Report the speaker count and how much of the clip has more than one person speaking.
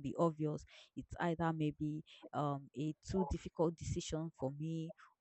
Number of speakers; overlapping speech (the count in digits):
1, no overlap